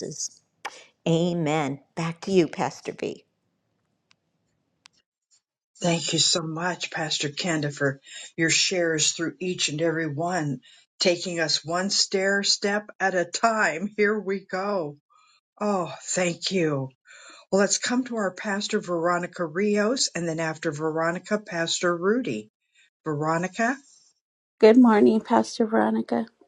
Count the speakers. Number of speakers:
3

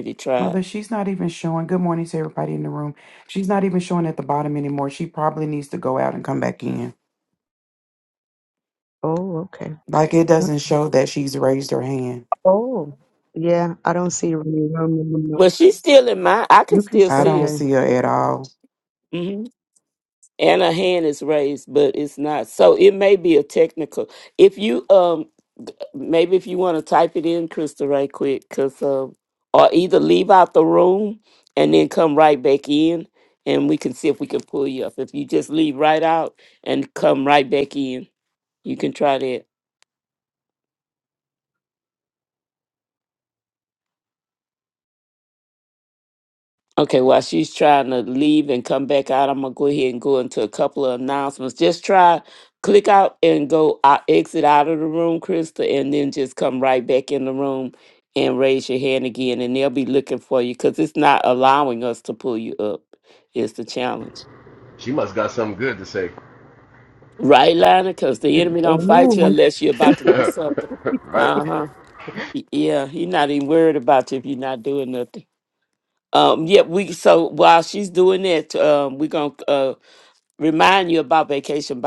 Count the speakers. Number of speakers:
4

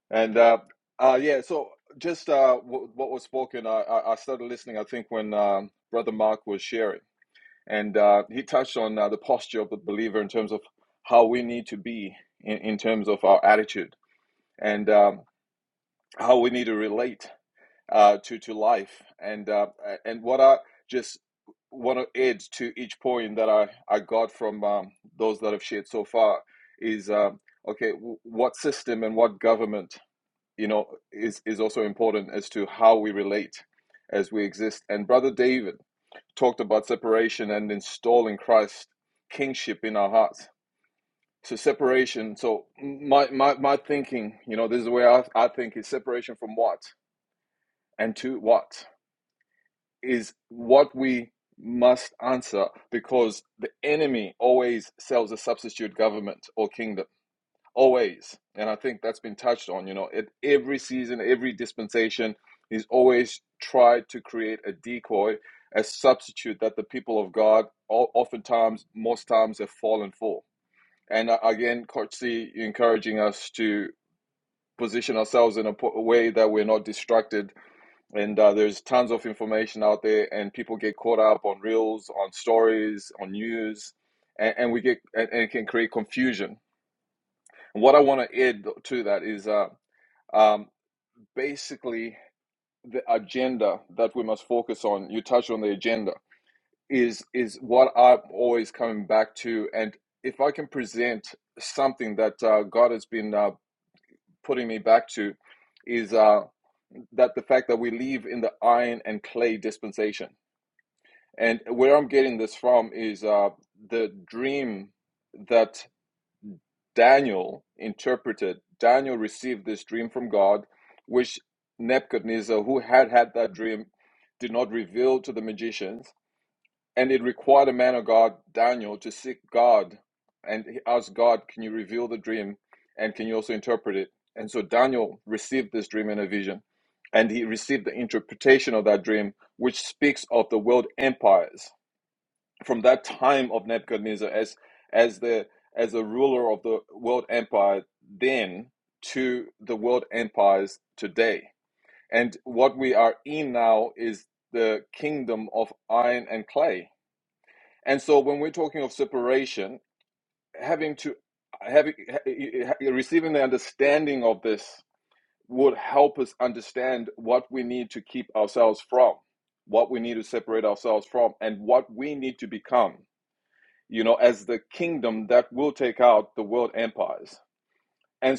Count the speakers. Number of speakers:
1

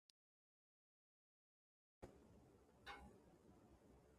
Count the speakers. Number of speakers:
0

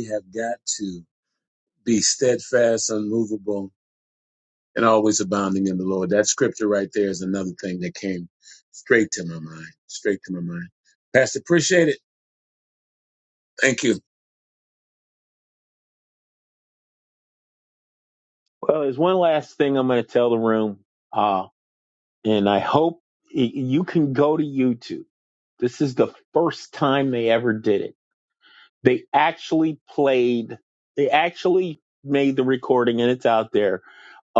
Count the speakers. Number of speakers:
2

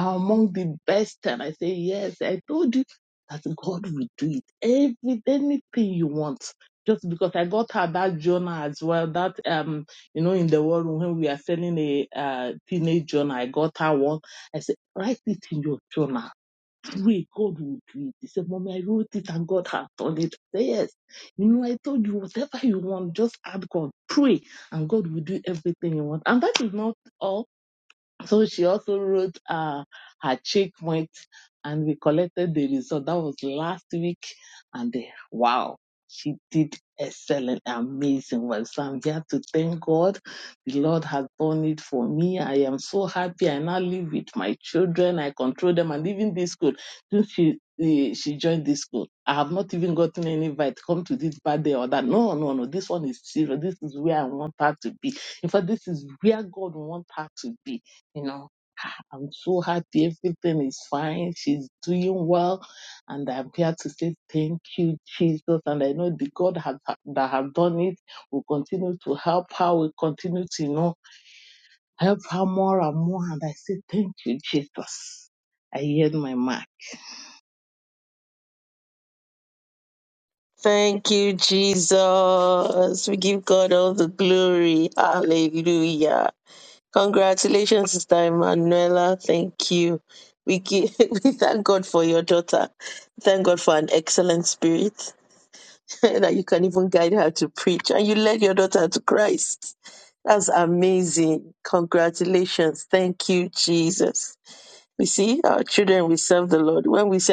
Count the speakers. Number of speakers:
2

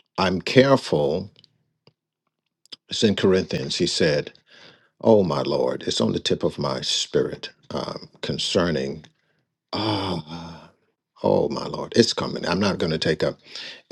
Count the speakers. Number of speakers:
1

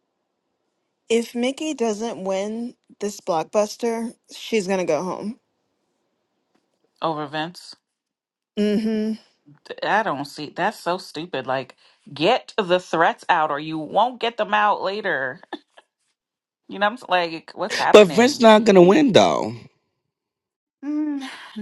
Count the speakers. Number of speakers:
3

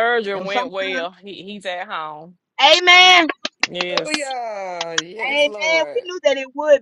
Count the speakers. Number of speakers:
3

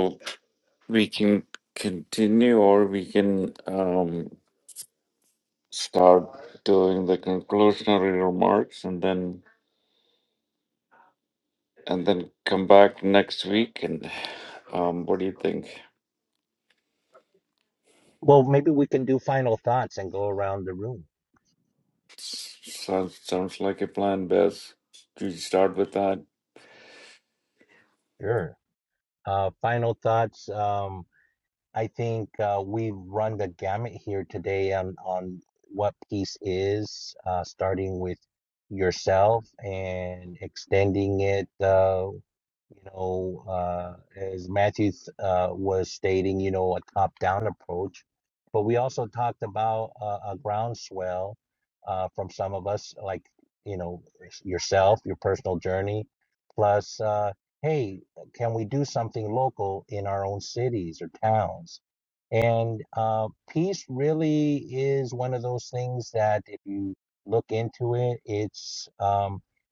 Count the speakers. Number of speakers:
2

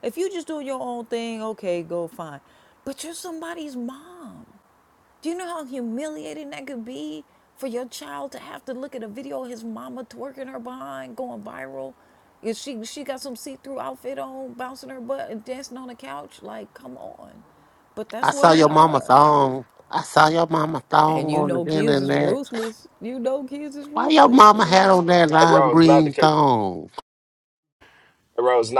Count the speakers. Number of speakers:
3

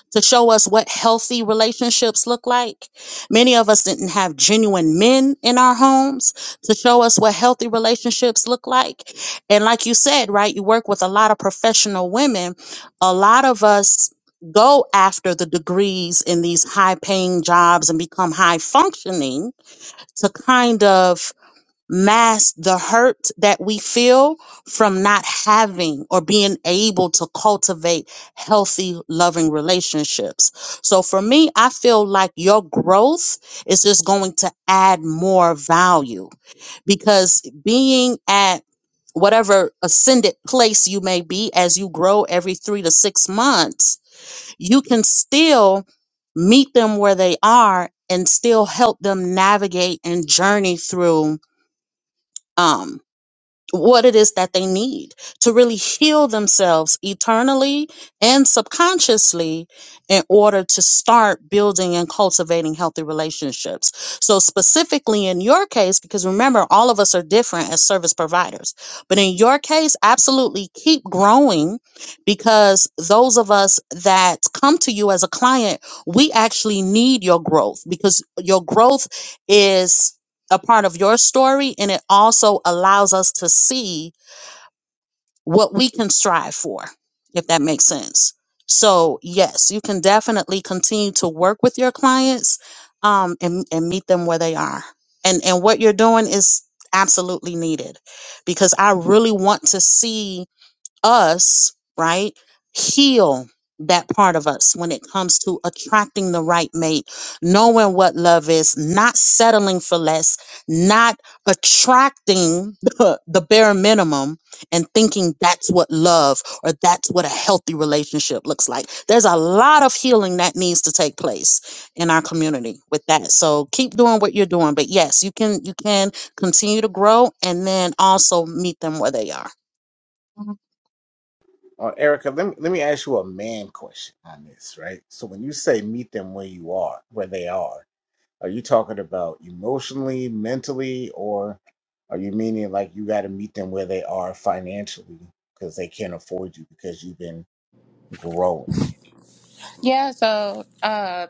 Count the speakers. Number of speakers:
3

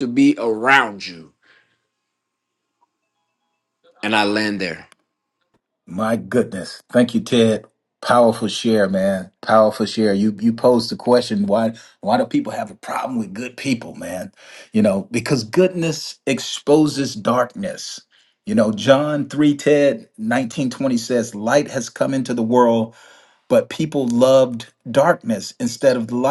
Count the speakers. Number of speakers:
2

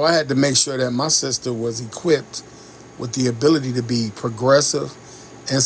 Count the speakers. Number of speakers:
1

